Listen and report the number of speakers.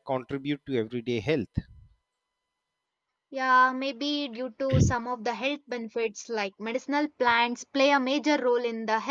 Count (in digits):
2